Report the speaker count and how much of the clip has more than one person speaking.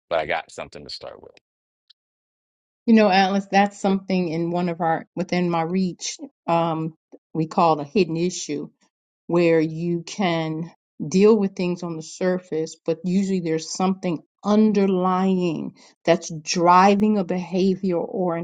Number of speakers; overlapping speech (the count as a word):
two, no overlap